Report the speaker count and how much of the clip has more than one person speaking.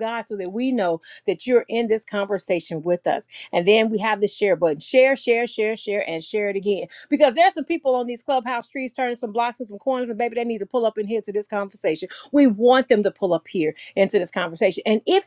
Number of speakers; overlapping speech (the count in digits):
1, no overlap